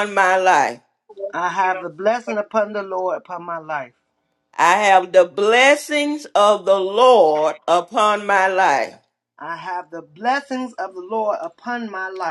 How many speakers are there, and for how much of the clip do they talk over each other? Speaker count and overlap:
2, no overlap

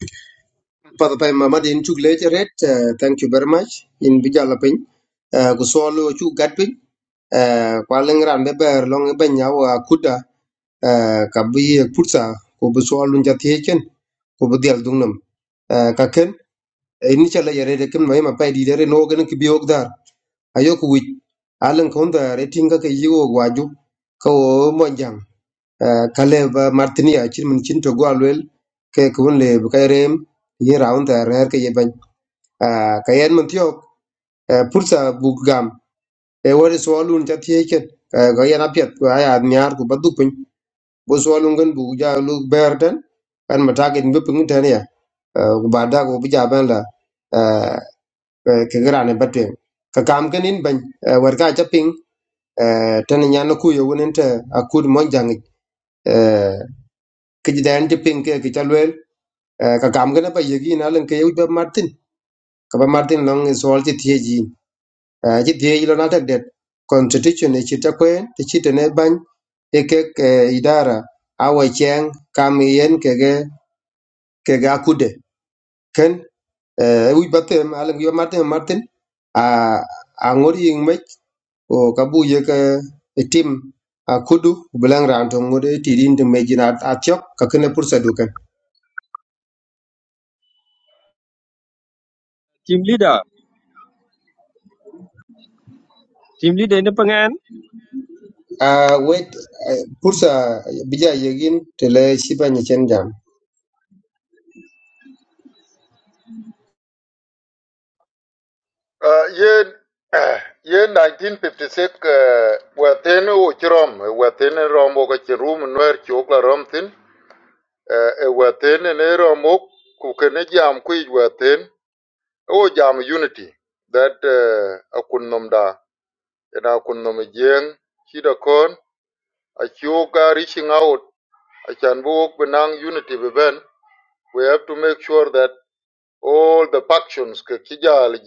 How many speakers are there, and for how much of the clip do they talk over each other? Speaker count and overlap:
3, no overlap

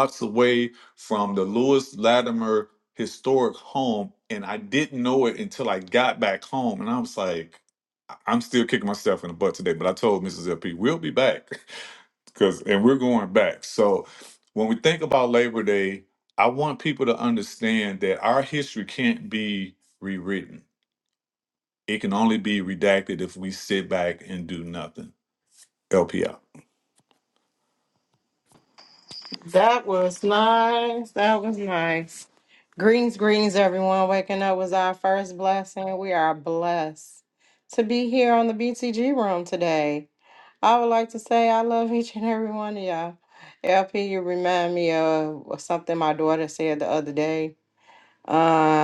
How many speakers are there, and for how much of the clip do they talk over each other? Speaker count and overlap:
2, no overlap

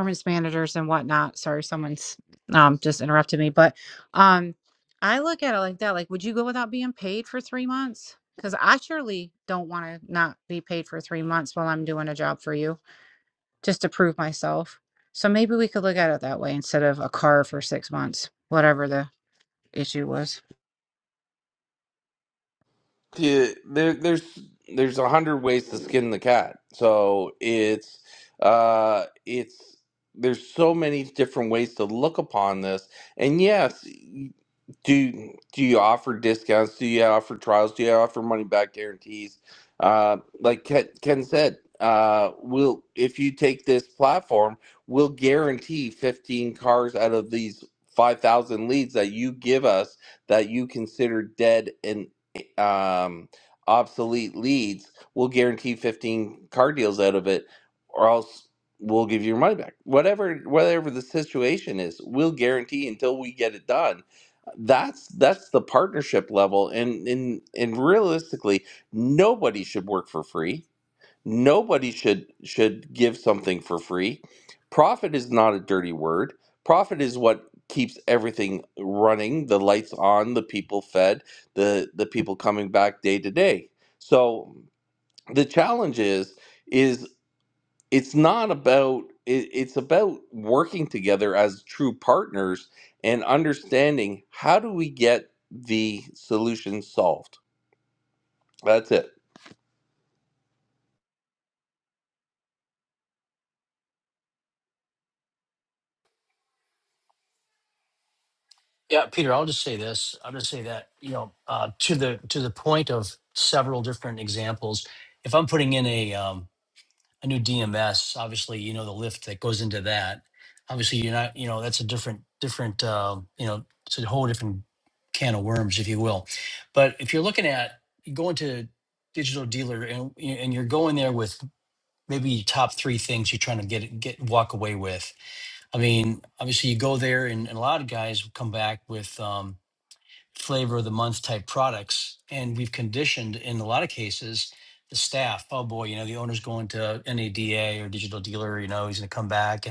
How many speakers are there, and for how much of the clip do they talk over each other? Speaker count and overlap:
3, no overlap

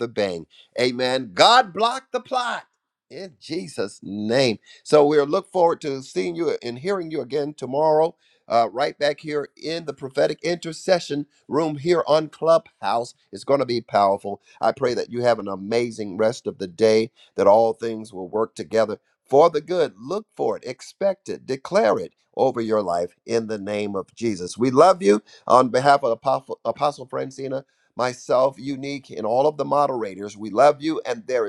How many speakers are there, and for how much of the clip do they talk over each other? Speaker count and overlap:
1, no overlap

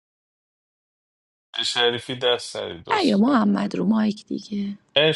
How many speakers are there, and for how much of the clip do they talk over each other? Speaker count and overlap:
2, about 9%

